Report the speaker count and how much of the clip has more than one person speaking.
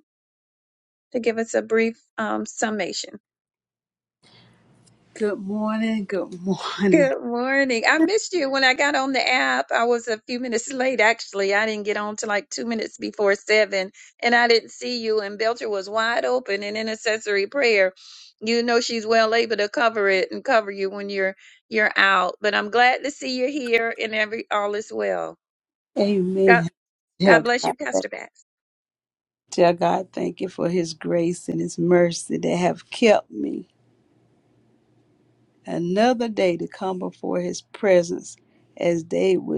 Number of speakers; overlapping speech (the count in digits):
2, about 3%